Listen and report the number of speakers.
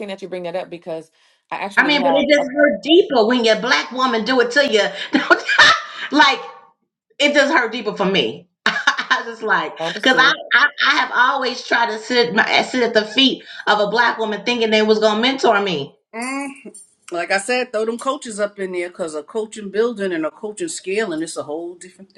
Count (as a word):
three